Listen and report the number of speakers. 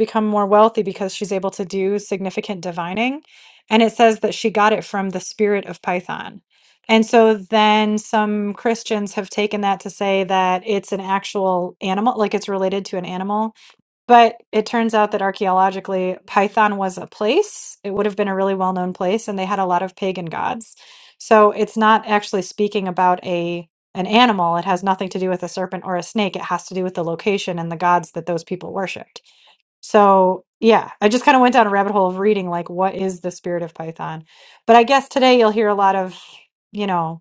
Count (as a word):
one